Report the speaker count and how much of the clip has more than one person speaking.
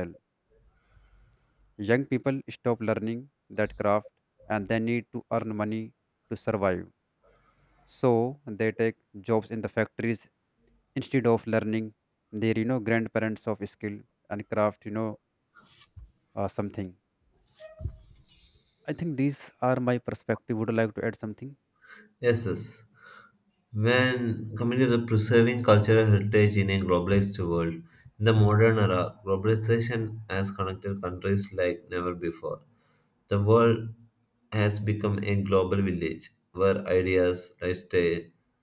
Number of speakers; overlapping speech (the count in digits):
2, no overlap